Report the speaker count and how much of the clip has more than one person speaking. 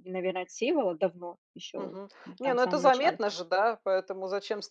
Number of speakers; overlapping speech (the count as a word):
two, about 20%